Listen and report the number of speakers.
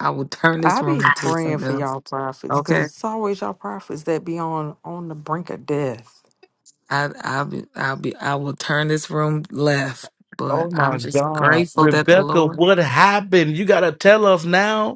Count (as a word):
three